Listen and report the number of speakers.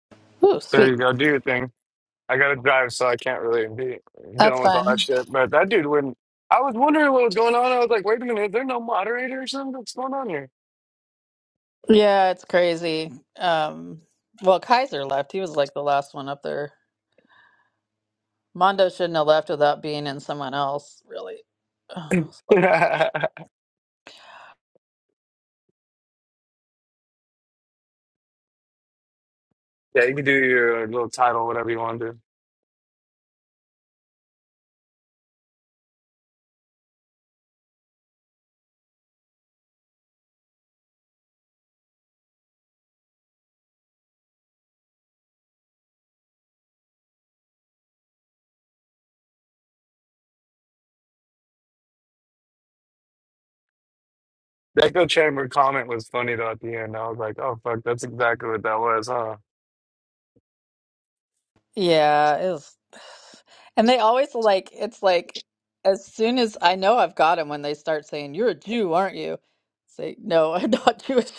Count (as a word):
two